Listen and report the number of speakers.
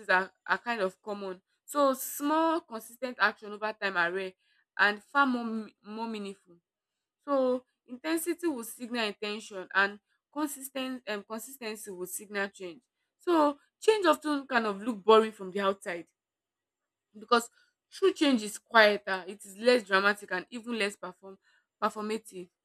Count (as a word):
one